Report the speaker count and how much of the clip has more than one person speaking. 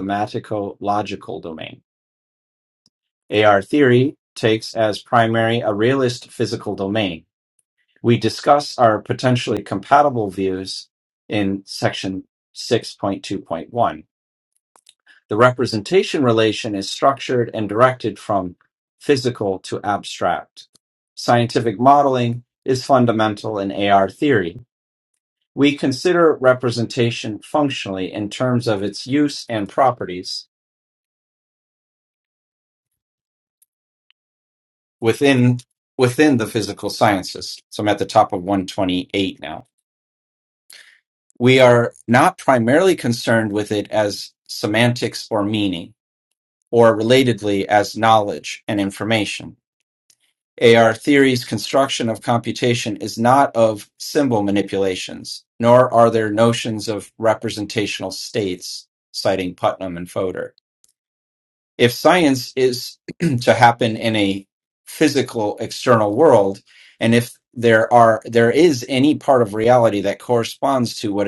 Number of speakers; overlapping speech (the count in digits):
1, no overlap